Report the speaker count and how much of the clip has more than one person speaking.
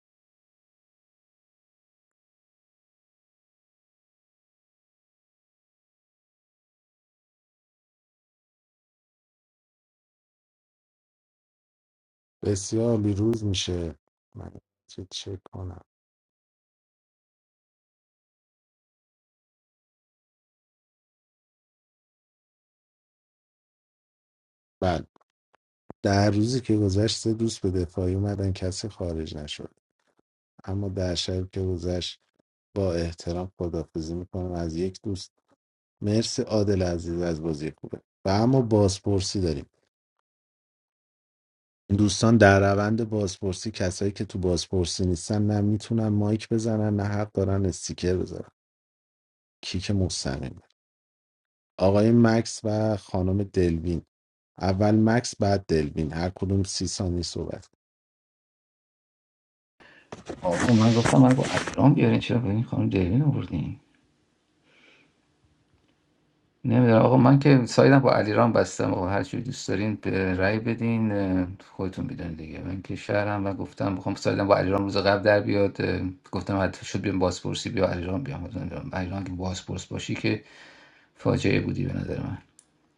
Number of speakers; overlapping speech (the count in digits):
2, no overlap